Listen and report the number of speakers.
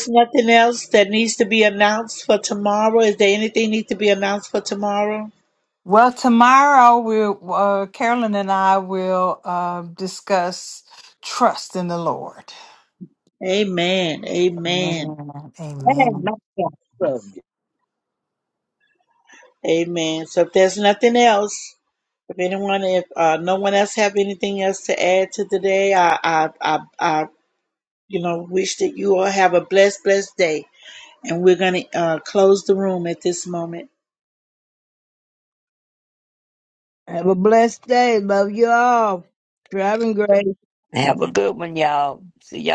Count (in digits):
4